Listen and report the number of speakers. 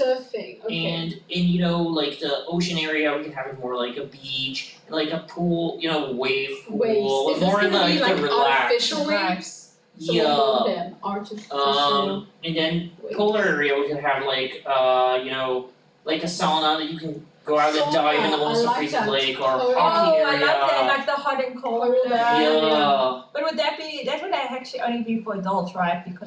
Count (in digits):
3